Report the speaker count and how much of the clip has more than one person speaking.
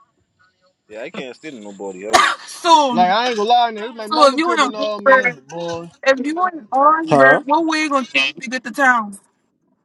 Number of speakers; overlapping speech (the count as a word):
three, about 18%